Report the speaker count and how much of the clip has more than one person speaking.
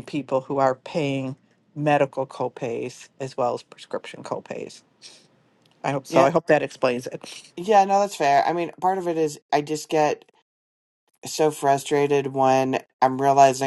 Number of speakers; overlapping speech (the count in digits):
2, about 1%